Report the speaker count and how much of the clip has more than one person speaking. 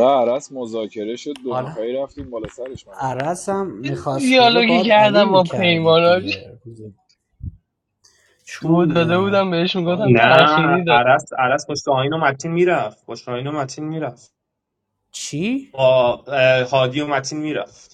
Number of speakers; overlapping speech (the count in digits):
4, about 22%